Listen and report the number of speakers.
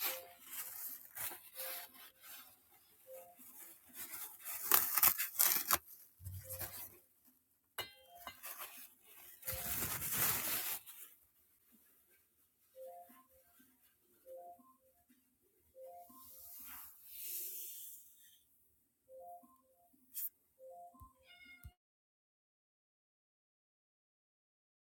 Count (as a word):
zero